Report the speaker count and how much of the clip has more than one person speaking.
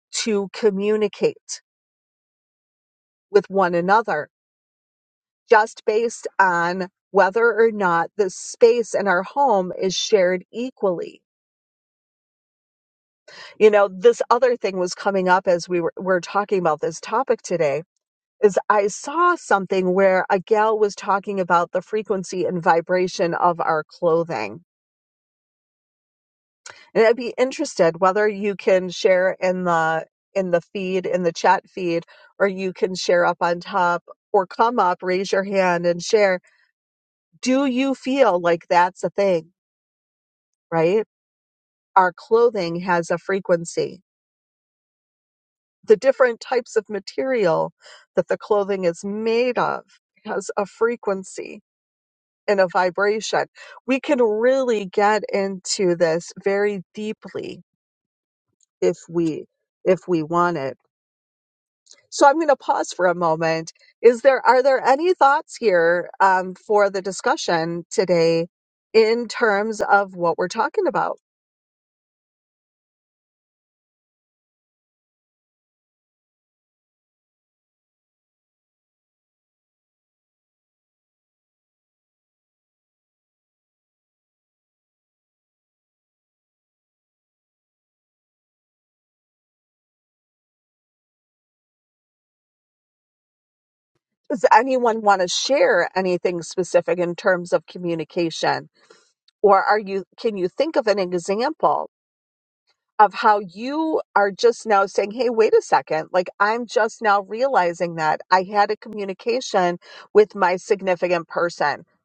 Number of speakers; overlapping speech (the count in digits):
1, no overlap